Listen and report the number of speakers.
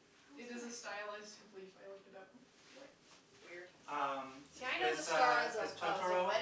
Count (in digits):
3